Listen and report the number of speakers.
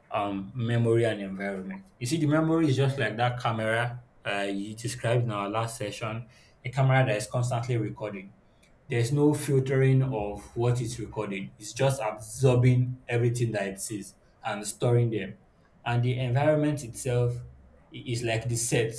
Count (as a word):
one